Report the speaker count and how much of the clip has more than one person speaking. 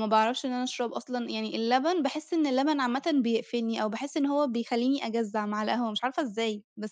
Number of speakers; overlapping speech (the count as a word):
one, no overlap